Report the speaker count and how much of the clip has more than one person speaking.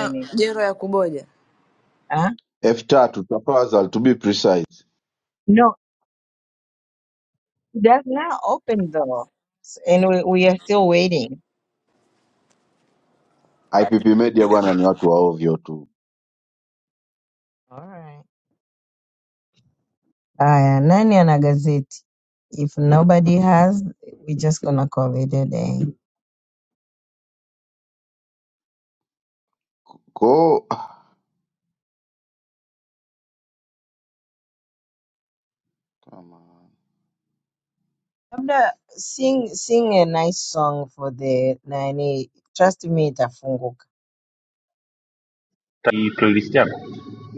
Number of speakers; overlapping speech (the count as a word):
four, about 1%